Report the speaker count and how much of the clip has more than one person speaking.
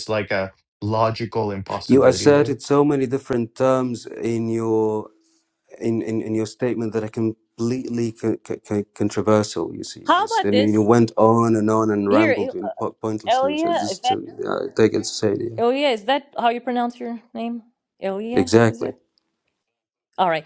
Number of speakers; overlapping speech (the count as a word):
three, about 15%